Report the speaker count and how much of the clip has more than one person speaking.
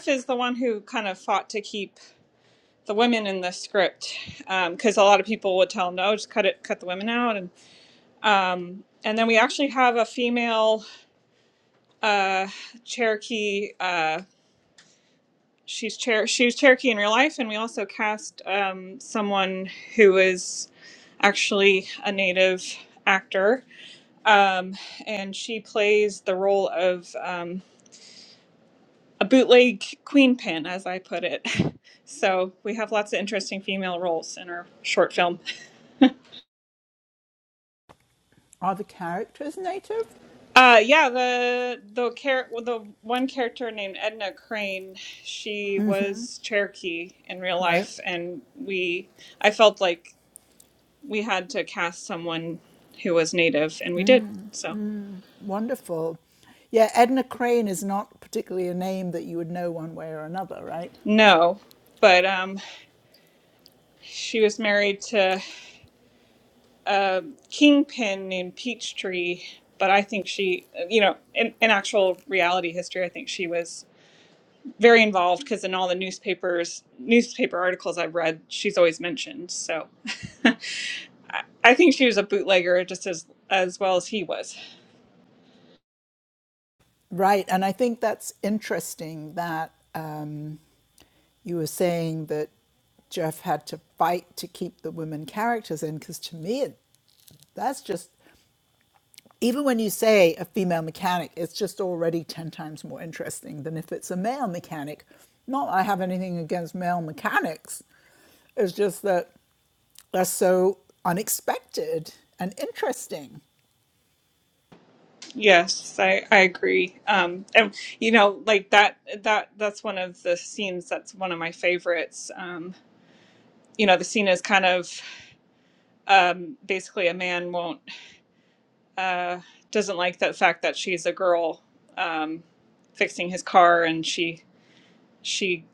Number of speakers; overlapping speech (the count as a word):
two, under 1%